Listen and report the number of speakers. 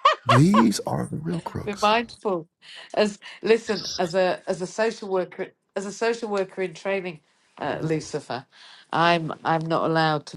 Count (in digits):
2